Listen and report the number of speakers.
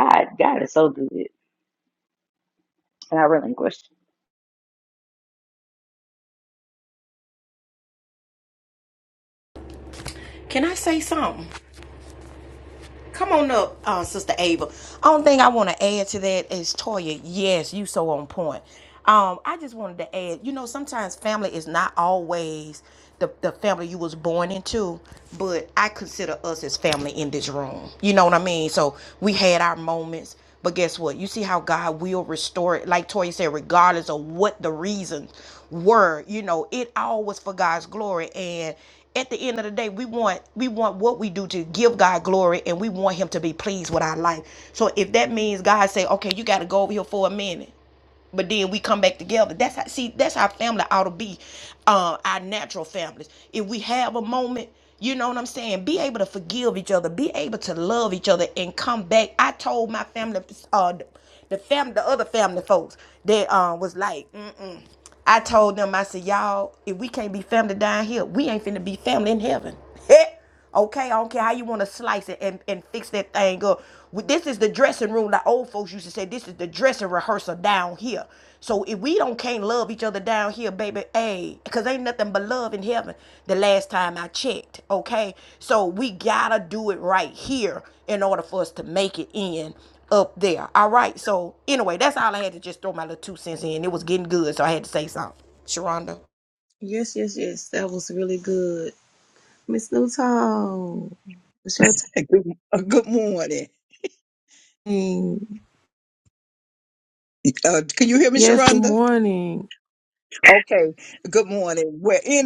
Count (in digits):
4